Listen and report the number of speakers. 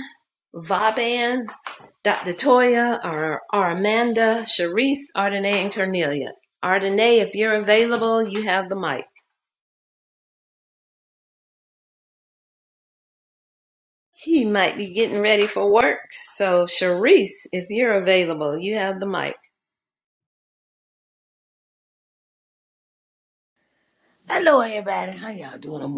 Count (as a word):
two